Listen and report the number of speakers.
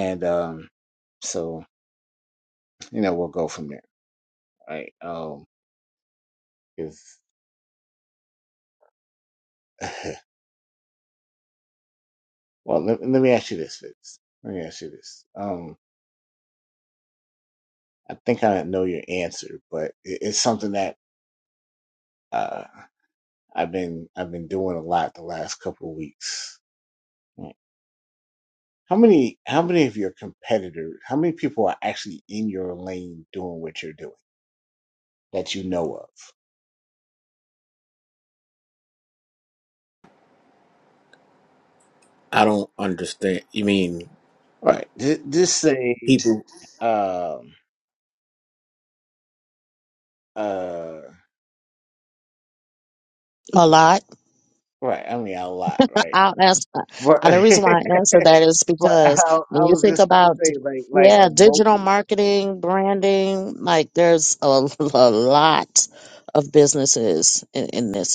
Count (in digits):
3